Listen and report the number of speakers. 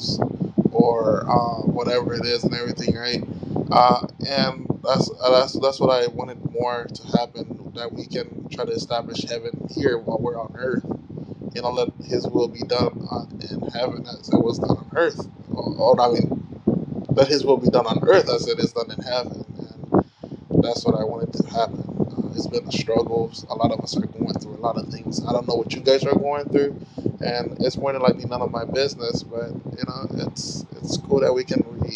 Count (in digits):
1